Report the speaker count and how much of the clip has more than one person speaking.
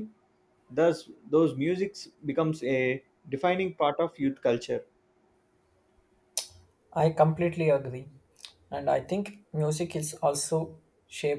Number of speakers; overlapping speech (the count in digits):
2, no overlap